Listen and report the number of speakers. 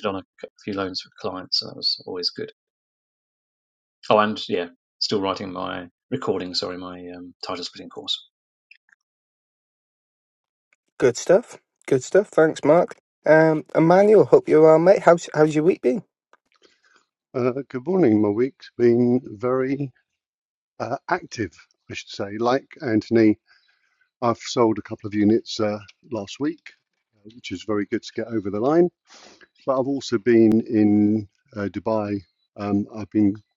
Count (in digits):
3